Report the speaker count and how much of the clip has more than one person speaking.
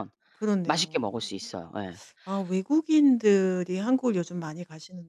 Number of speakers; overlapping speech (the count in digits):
2, about 5%